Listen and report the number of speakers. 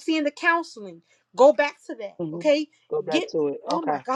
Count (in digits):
2